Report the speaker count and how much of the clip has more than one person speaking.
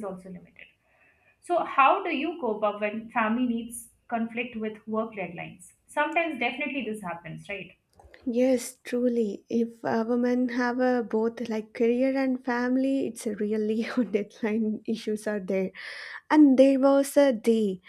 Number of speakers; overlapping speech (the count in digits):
2, no overlap